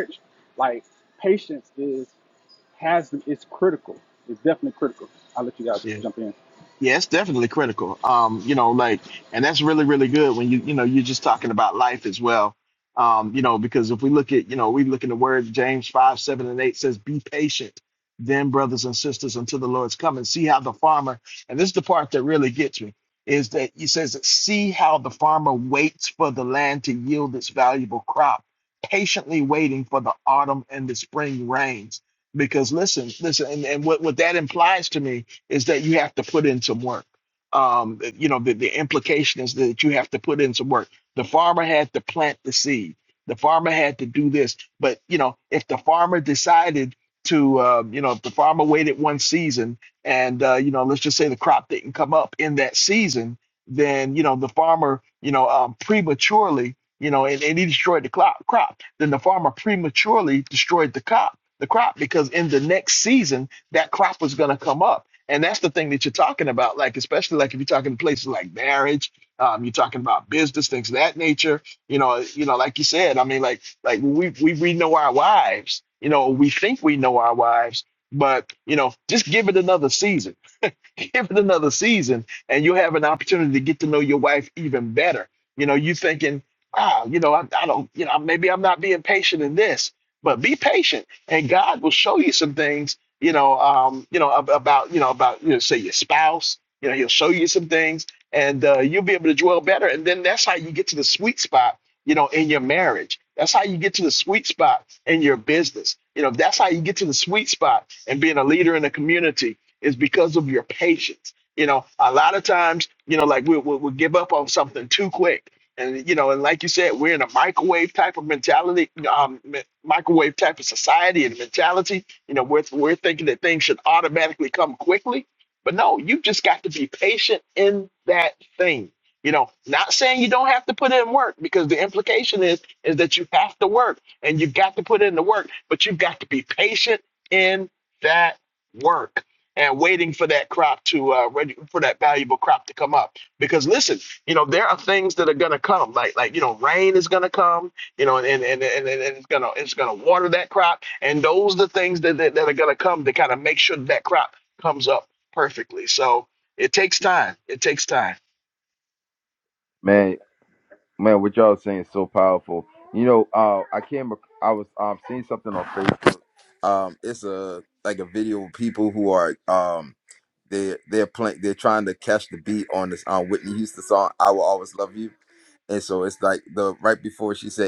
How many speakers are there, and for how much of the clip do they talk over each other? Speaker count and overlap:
3, under 1%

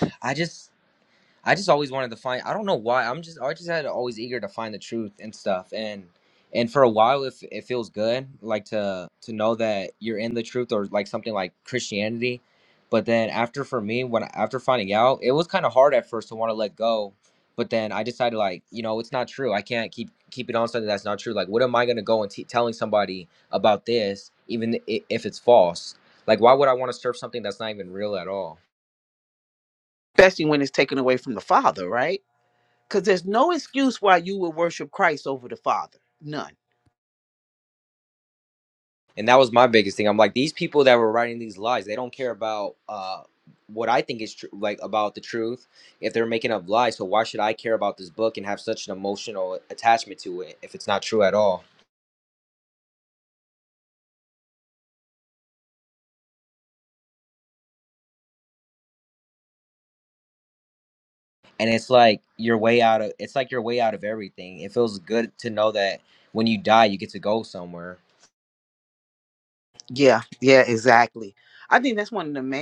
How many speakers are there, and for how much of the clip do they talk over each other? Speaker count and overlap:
2, no overlap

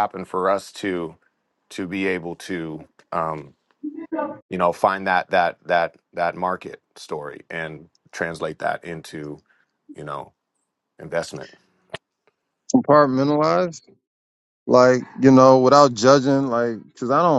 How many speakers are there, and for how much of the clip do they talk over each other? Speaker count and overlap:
2, no overlap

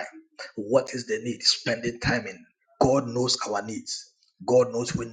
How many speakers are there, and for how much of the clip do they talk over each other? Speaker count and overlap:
1, no overlap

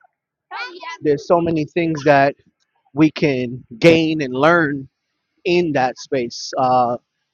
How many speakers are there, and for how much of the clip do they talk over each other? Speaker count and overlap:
1, no overlap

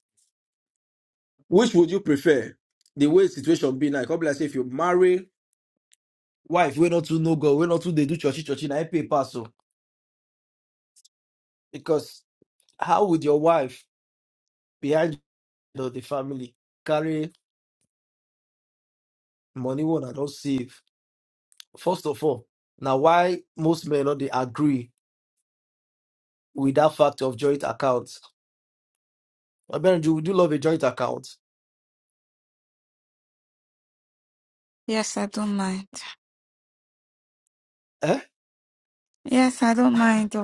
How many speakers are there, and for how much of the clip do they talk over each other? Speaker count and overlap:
2, no overlap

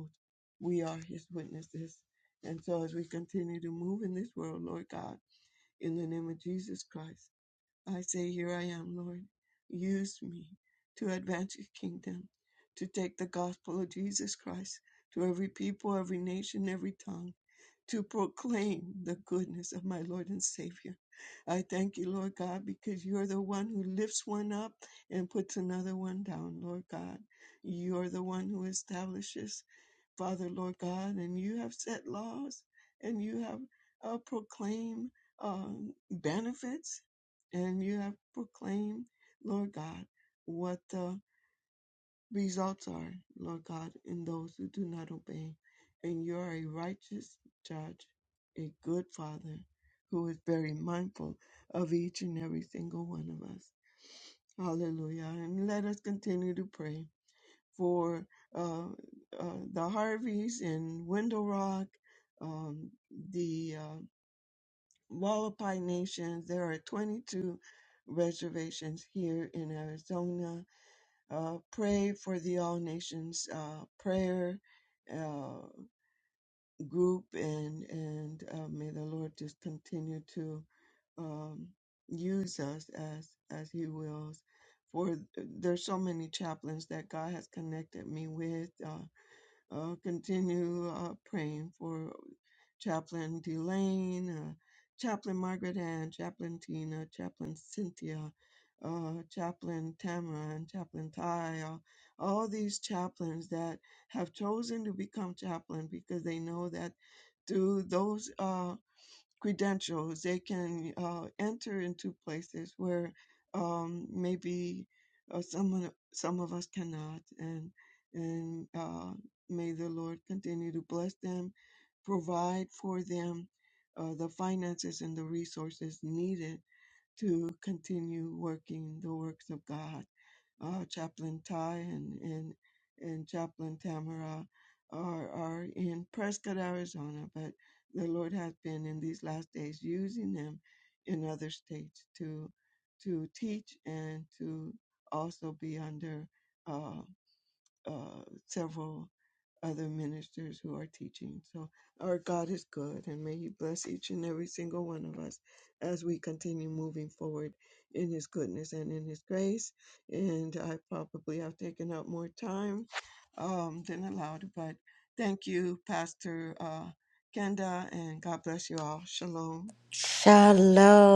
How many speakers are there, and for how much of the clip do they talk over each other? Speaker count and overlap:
2, no overlap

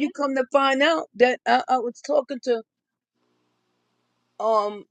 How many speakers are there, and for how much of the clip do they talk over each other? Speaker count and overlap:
1, no overlap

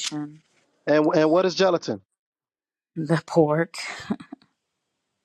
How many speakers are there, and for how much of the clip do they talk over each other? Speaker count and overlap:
2, no overlap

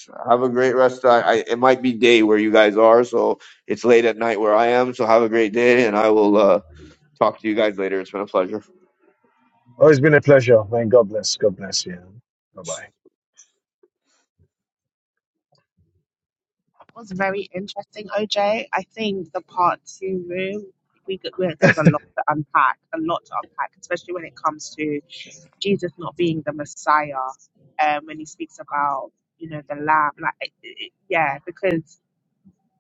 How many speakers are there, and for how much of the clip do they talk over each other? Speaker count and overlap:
3, no overlap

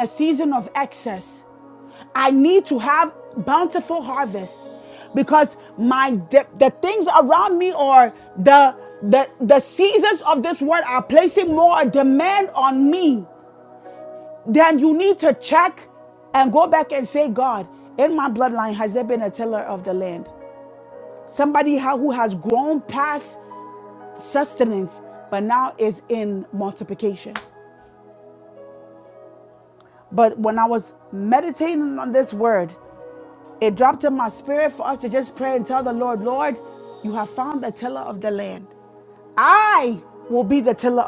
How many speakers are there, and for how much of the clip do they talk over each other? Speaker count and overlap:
1, no overlap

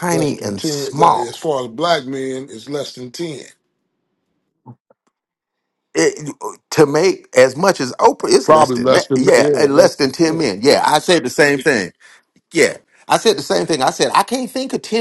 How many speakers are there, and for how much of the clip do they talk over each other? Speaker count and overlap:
2, about 22%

